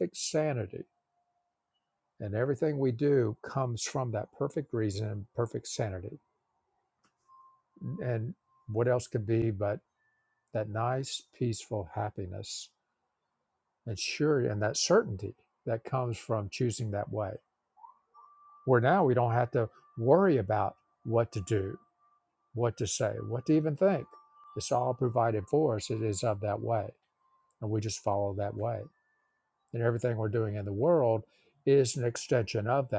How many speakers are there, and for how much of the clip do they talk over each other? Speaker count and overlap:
one, no overlap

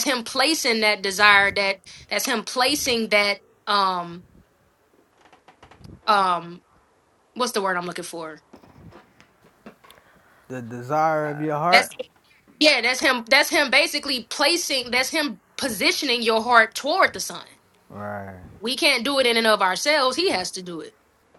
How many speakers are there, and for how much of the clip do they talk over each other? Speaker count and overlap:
two, about 1%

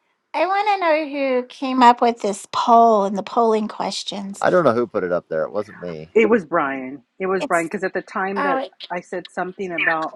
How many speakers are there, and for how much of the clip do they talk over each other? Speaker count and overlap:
three, about 3%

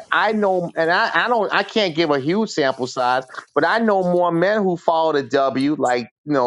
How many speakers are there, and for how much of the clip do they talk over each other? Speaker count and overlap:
one, no overlap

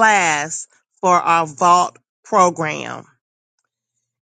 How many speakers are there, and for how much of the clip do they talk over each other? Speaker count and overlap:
one, no overlap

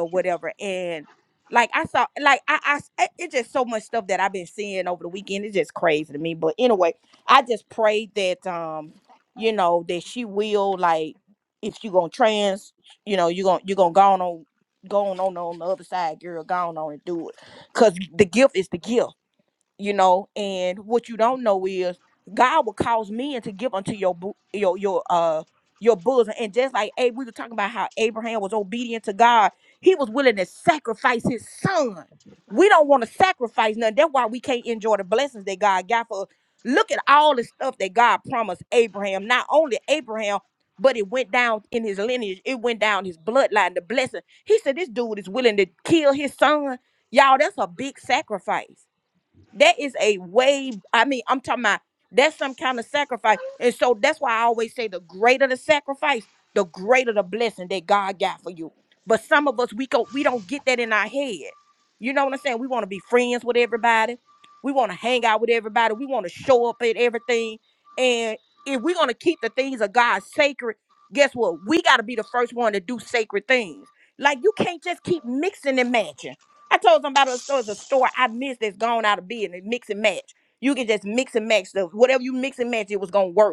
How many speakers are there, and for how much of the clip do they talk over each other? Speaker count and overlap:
one, no overlap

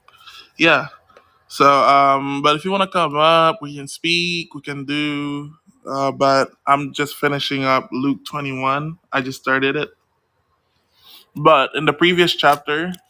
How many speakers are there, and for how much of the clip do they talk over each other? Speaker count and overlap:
one, no overlap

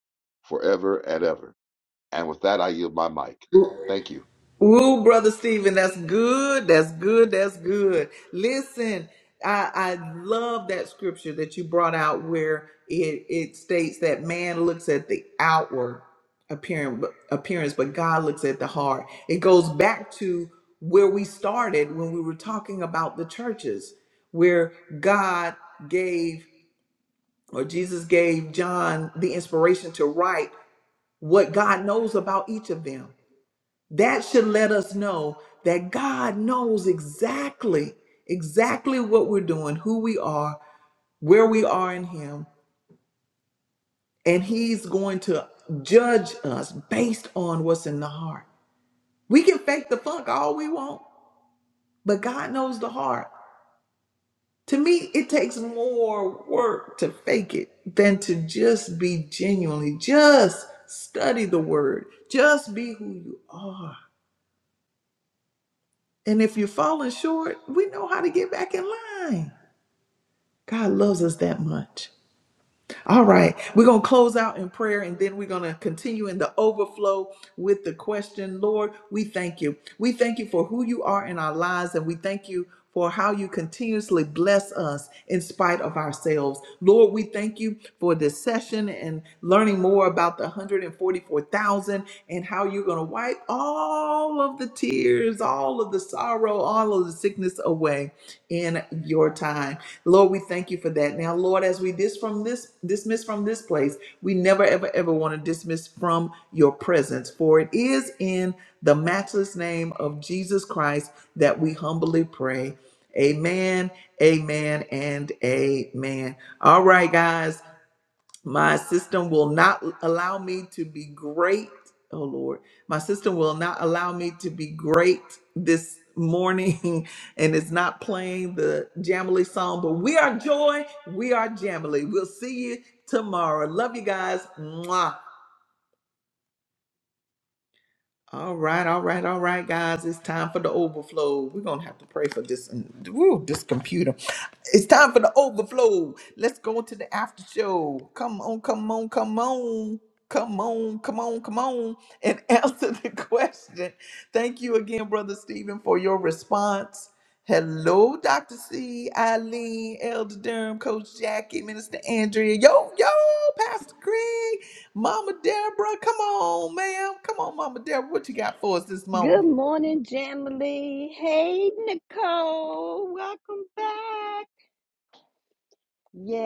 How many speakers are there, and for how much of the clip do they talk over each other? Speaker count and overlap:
three, under 1%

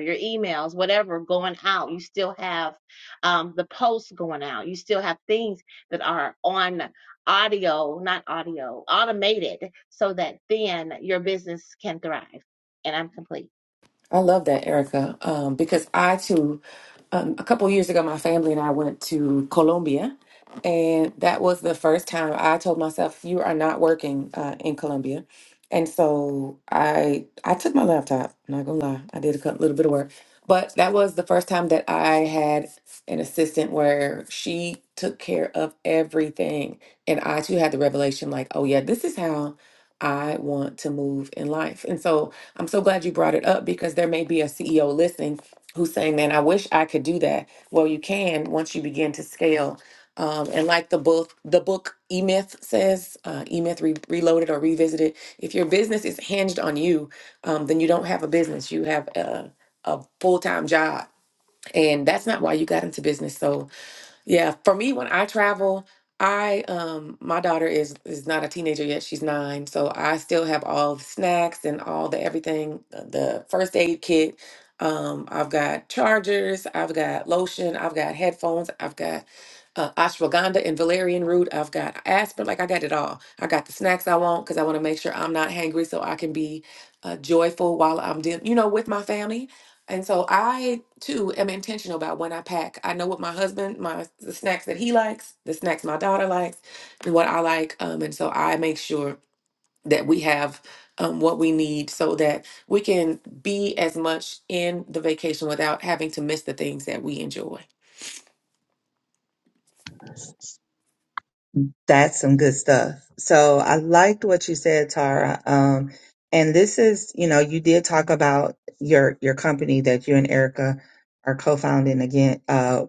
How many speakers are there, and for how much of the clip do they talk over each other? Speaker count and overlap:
three, no overlap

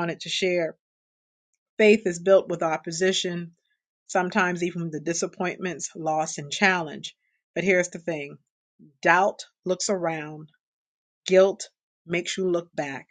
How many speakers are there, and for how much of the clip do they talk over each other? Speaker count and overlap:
one, no overlap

